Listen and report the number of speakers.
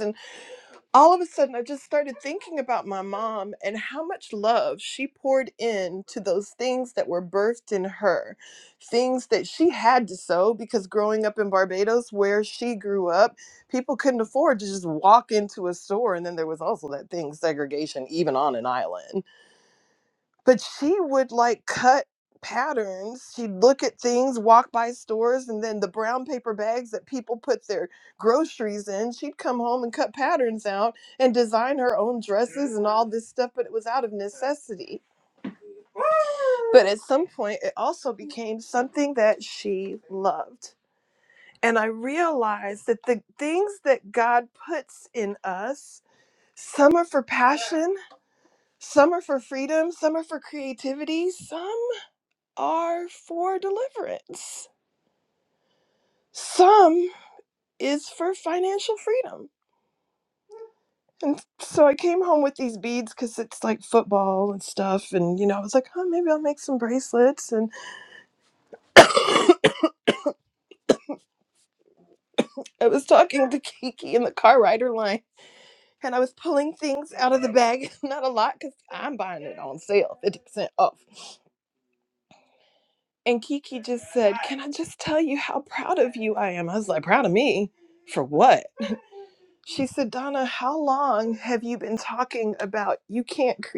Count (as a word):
one